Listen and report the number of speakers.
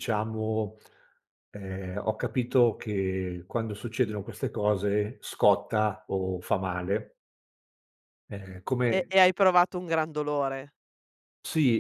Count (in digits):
2